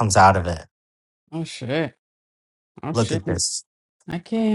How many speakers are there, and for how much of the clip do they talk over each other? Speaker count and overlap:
two, about 8%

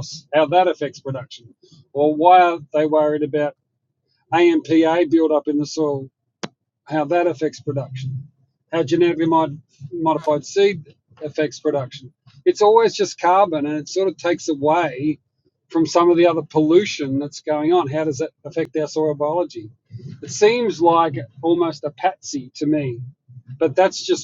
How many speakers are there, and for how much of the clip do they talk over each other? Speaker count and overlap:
one, no overlap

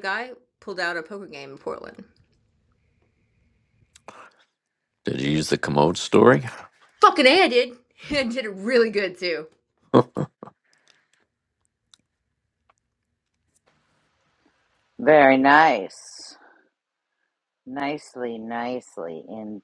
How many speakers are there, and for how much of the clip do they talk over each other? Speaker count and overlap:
three, no overlap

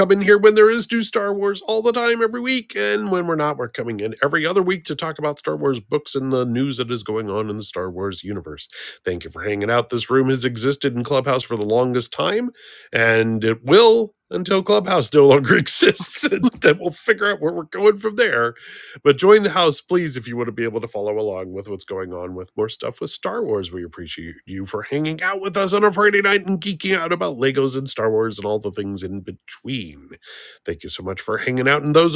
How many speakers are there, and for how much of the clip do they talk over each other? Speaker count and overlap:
one, no overlap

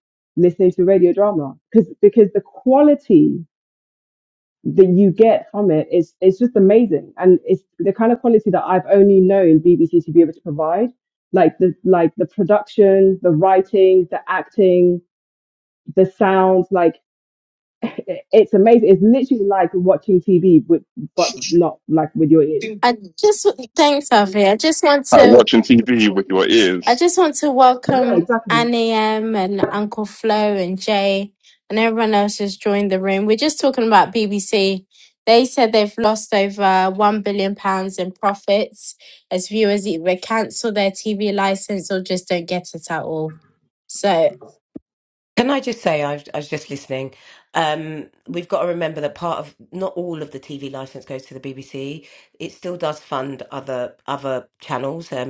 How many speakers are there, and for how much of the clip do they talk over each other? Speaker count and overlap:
four, about 2%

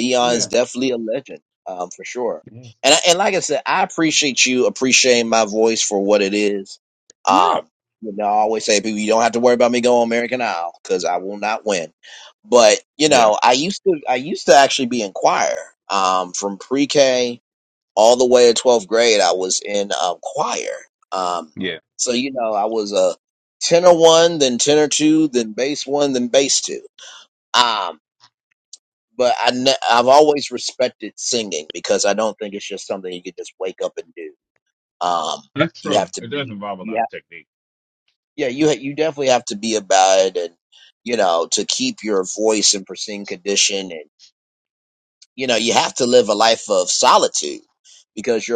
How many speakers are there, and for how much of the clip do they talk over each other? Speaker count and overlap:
two, about 4%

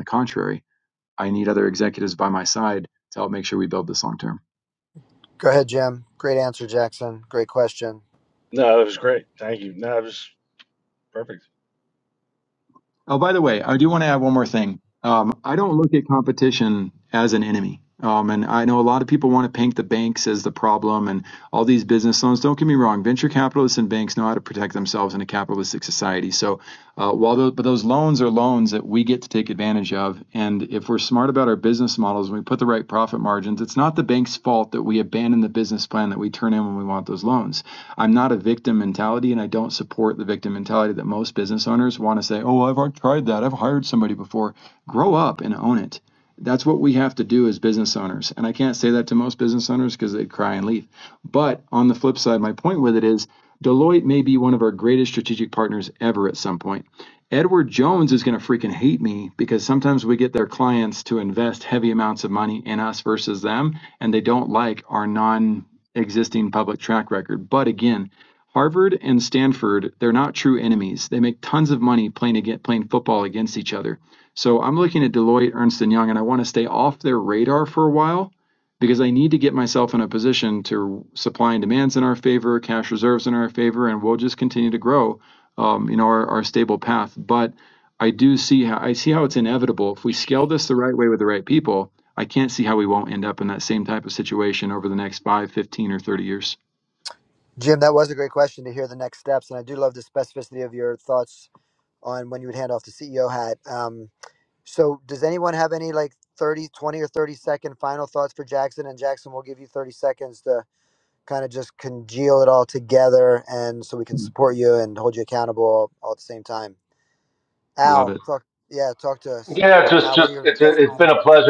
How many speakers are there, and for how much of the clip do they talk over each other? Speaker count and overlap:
four, about 1%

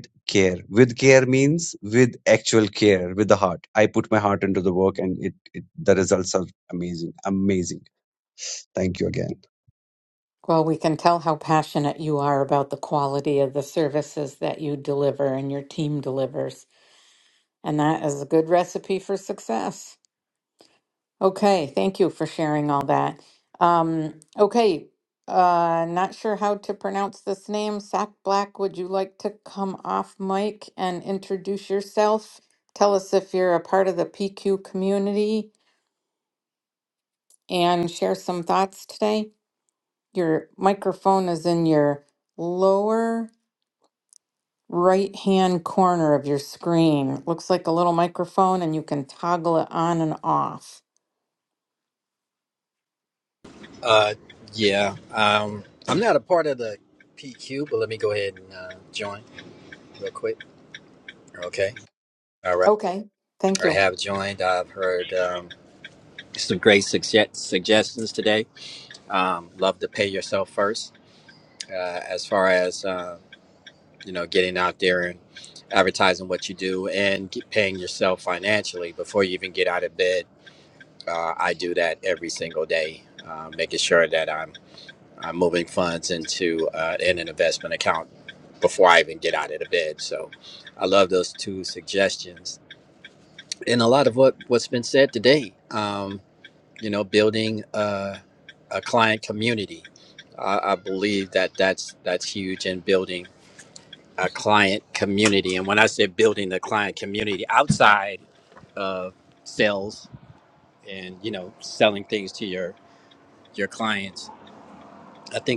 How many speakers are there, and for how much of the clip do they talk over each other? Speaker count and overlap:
three, under 1%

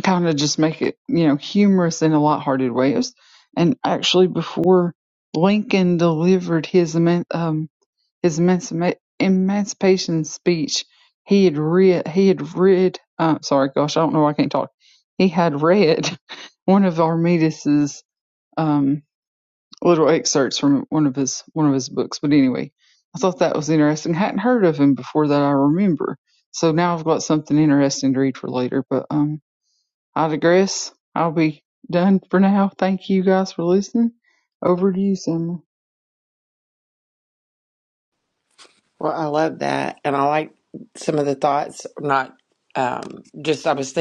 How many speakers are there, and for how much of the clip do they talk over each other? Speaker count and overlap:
two, no overlap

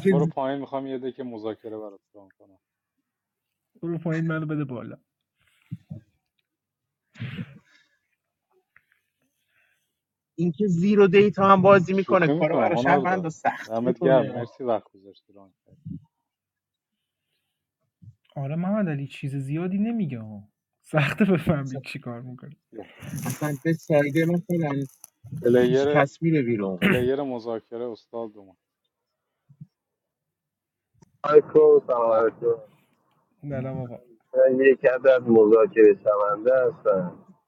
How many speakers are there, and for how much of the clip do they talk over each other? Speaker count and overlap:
four, about 8%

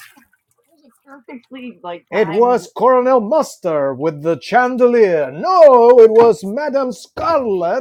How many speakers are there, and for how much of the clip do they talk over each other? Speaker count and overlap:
two, about 7%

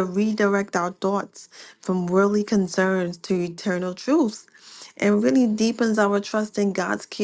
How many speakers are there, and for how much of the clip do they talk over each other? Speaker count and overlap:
one, no overlap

